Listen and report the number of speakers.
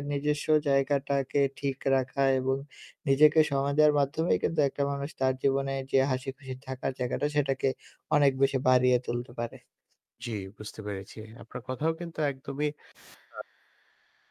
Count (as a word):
two